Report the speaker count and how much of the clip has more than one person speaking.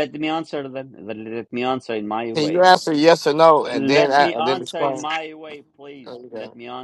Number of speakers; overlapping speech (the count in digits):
2, about 30%